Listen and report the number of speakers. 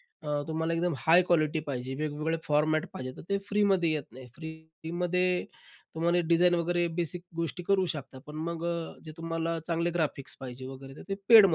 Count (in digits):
1